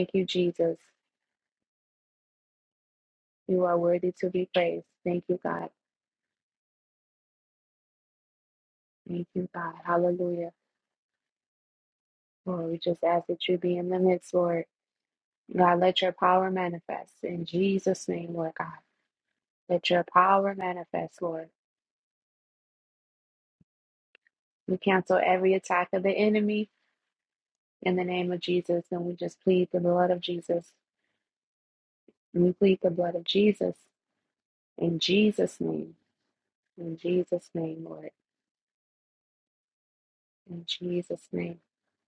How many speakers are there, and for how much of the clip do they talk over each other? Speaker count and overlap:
1, no overlap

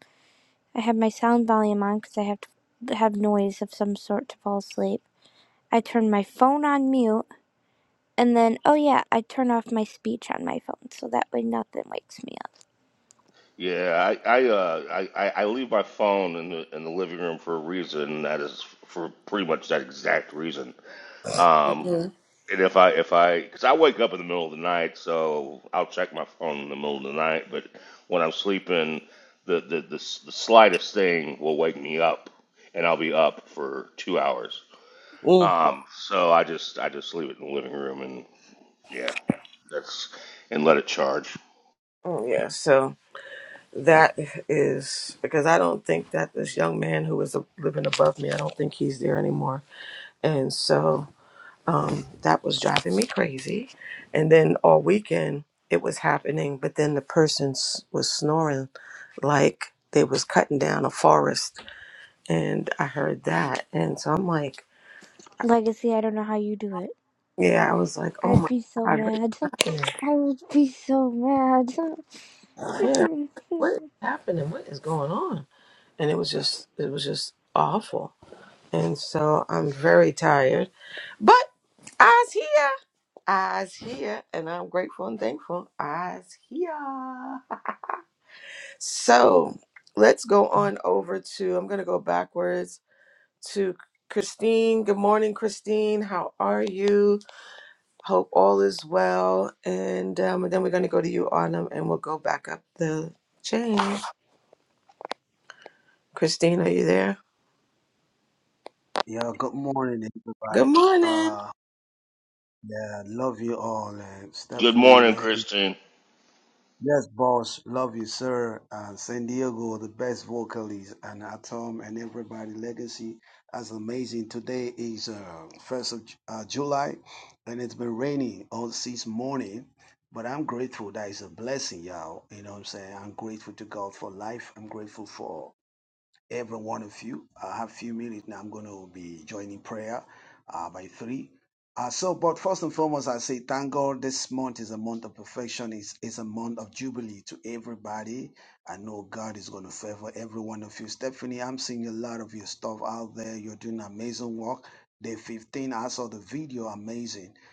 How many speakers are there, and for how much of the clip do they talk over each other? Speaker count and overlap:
4, about 2%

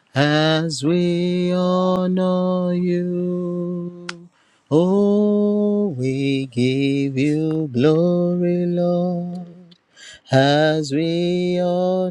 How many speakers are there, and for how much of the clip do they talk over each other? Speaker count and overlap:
1, no overlap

